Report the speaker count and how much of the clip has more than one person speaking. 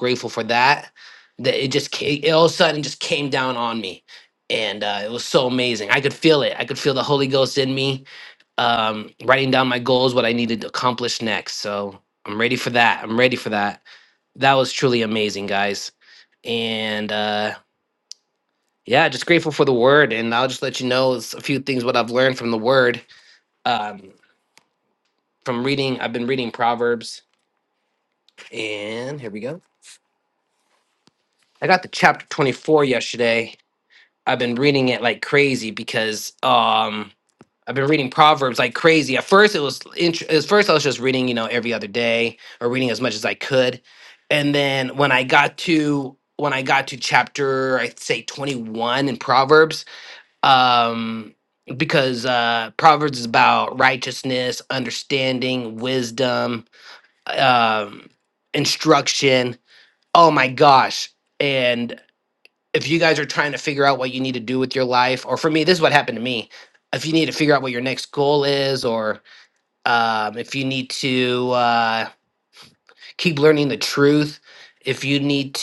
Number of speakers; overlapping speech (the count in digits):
1, no overlap